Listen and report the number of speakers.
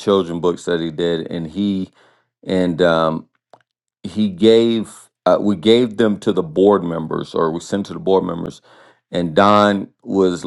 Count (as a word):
one